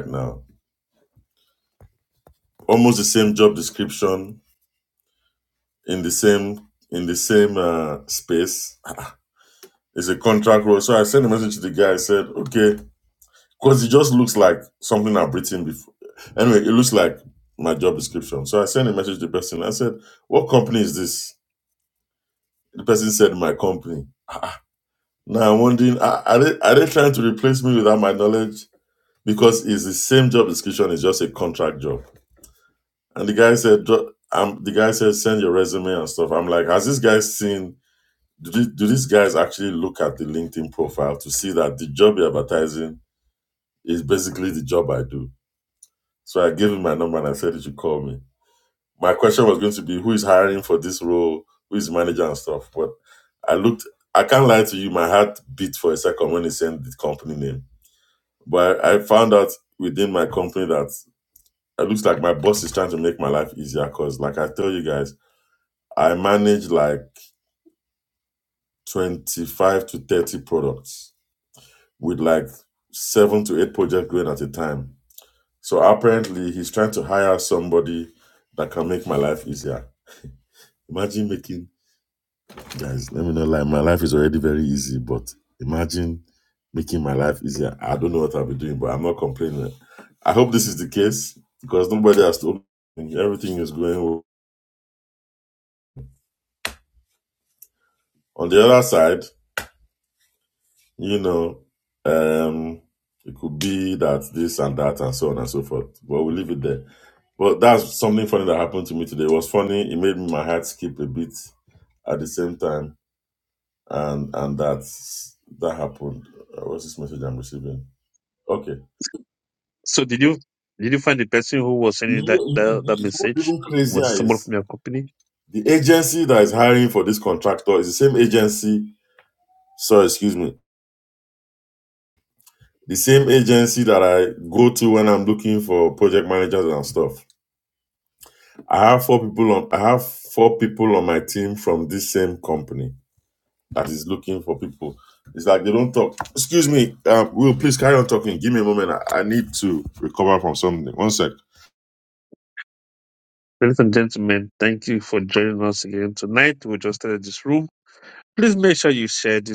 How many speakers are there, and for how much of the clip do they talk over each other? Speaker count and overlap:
2, about 1%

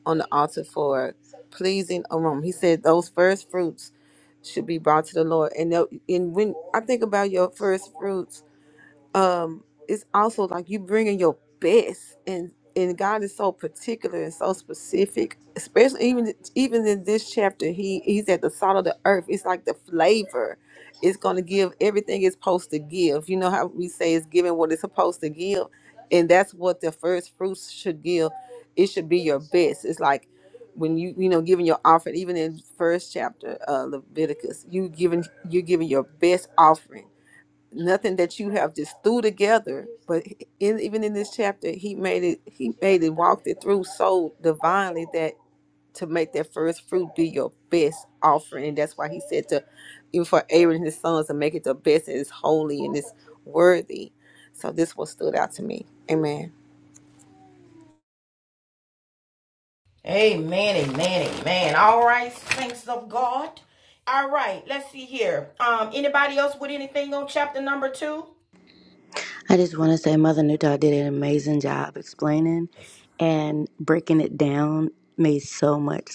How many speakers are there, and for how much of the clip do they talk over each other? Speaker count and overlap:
3, no overlap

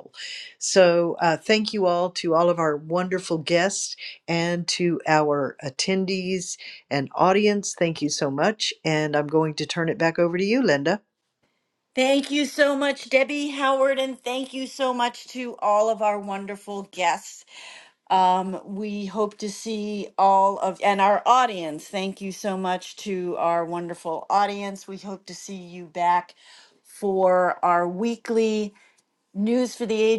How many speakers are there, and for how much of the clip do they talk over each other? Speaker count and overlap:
2, no overlap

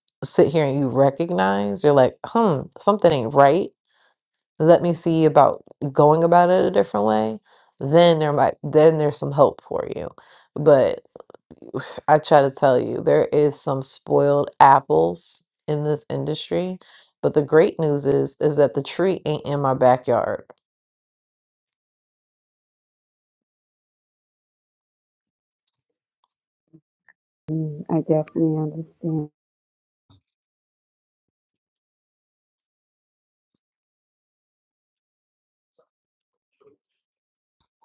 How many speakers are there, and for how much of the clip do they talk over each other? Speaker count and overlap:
2, no overlap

